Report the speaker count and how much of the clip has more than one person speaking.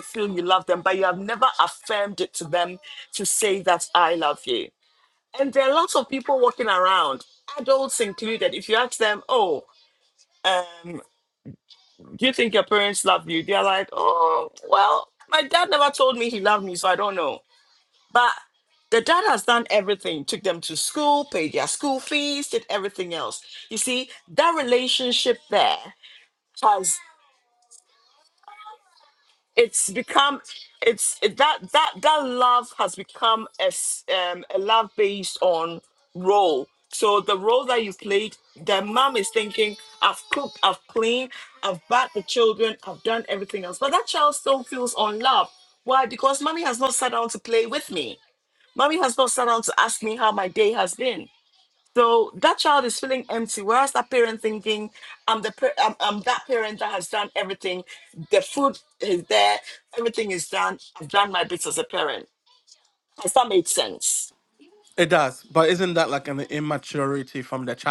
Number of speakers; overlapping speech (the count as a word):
two, no overlap